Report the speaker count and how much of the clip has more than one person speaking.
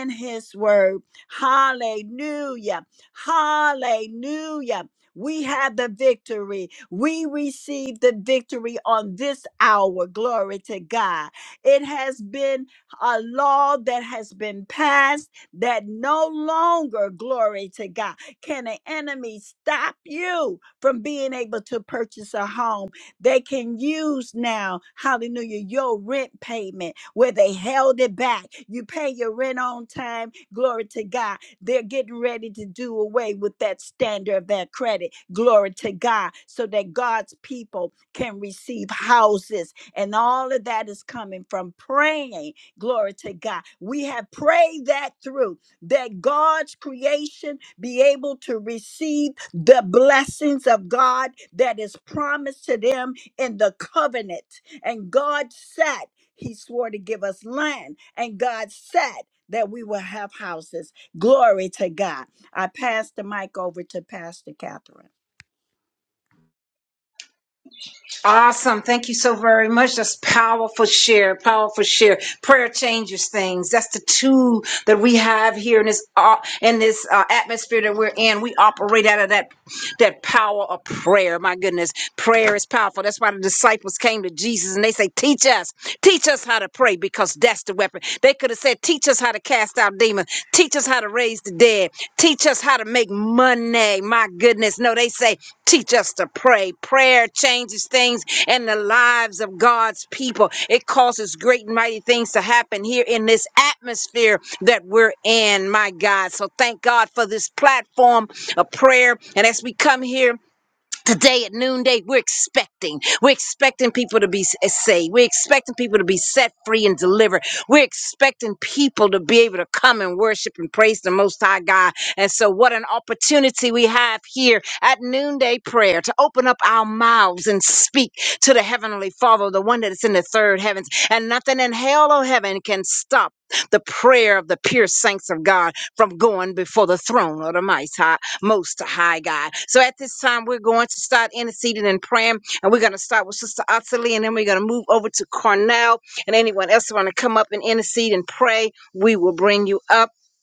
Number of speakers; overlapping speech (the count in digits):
2, no overlap